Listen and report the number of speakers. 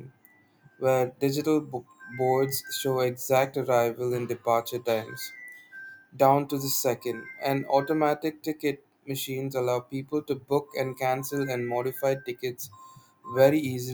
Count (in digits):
1